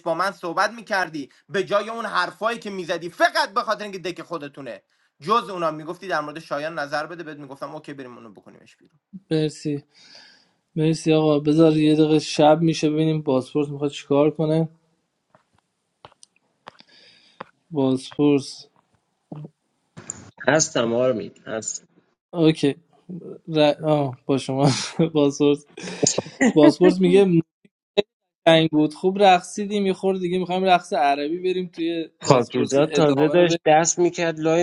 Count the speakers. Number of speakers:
3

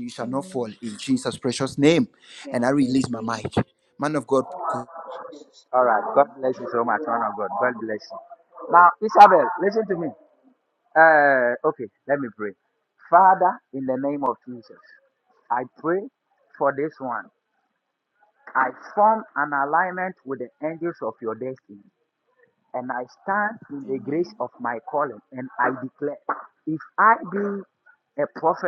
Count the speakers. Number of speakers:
3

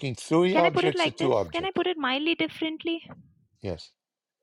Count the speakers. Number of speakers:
2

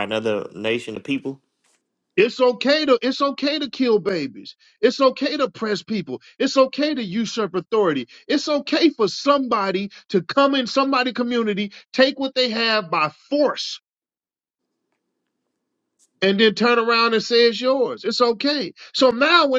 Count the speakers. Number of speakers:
2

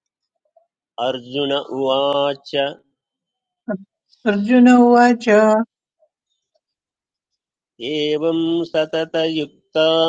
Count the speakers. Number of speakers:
2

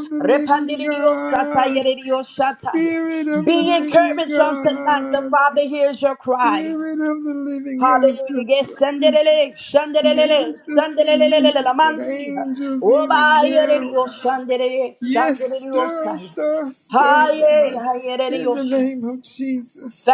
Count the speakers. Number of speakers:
2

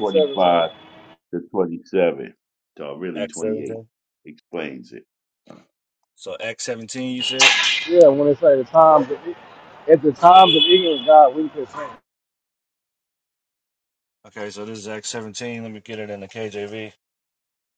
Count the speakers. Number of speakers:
3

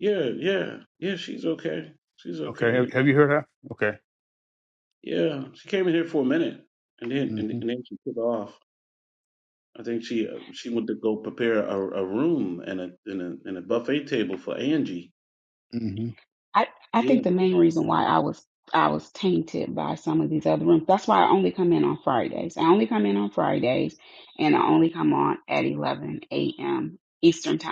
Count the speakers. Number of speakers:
3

